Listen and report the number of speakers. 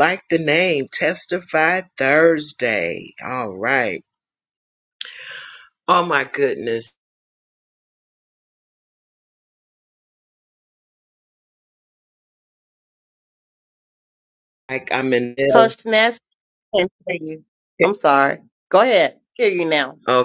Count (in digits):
2